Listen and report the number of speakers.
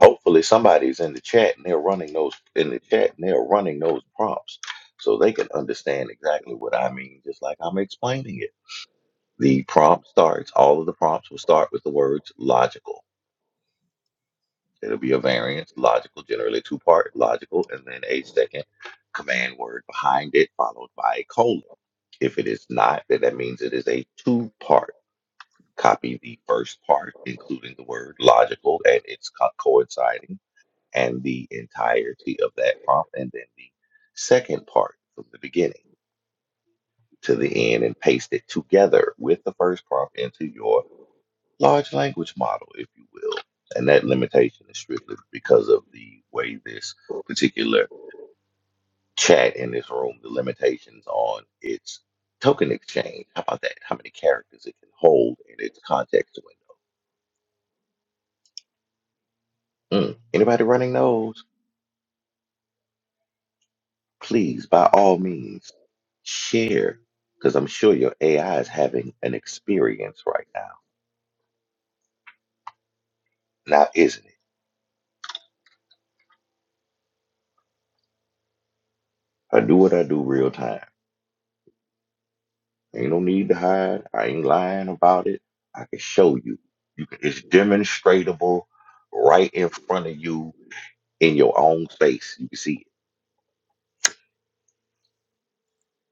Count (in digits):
1